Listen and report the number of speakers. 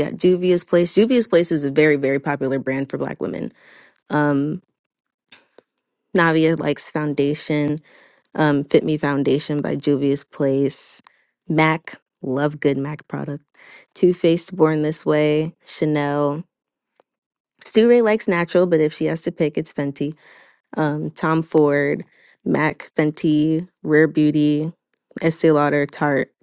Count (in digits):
1